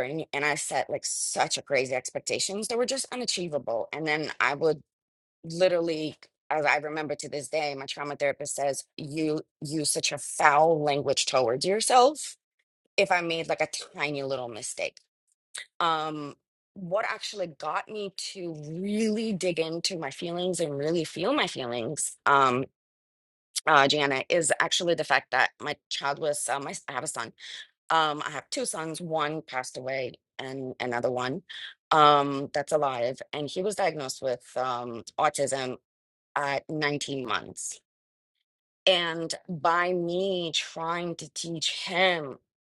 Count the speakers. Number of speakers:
1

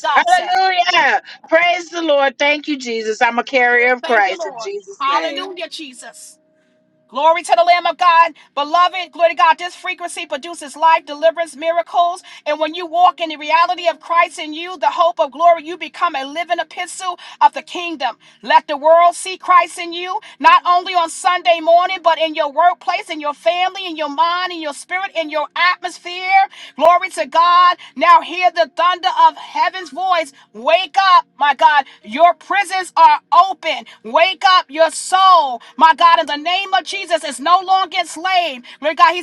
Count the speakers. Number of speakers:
2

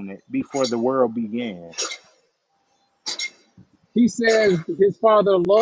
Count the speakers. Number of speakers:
2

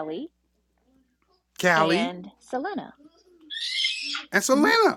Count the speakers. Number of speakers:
2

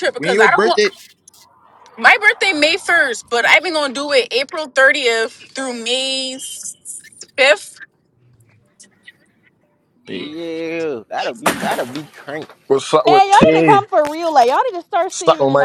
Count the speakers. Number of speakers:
4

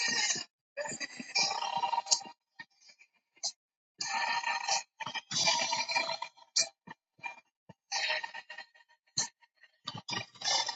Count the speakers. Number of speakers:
0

